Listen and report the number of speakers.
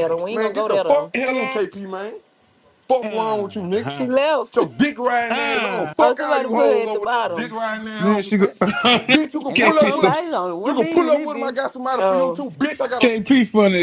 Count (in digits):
4